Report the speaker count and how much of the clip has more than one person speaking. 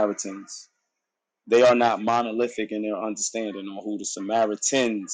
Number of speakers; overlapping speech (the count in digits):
1, no overlap